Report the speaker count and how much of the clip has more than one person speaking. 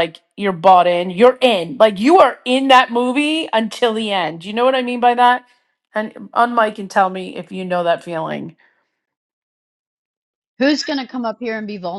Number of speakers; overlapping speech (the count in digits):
2, no overlap